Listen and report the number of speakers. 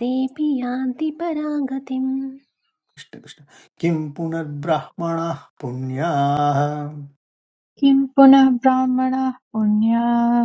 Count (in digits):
3